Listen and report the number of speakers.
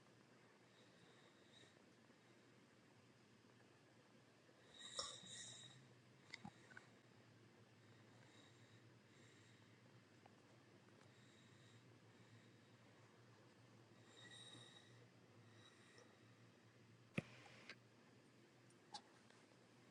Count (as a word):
zero